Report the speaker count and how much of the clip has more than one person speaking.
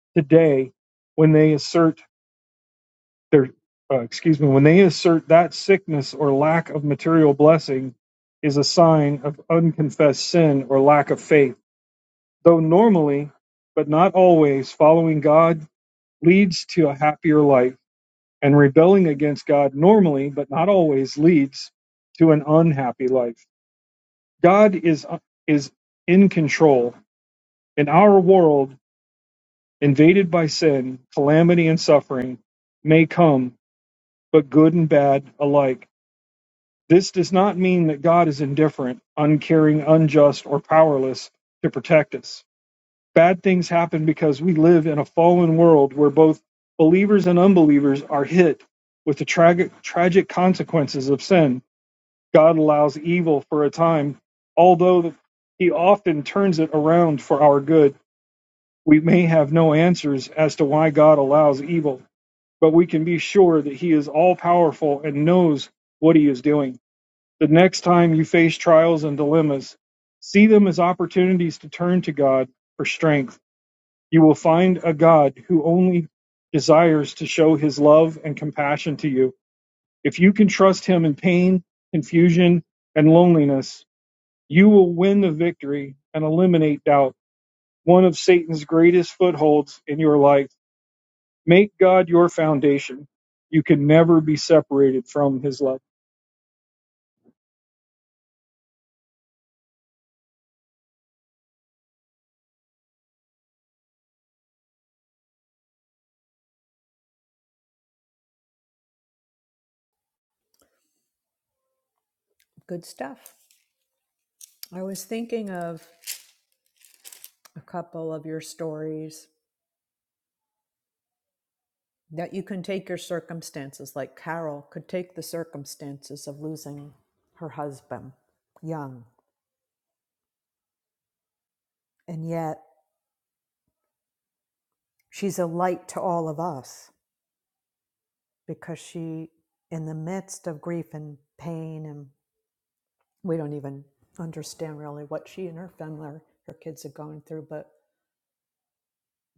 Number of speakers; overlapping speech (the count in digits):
2, no overlap